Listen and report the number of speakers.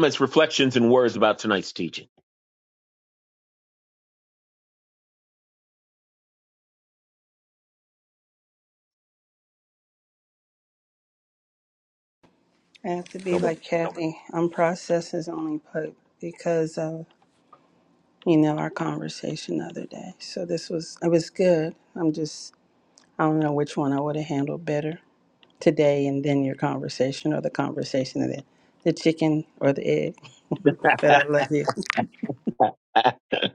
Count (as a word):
two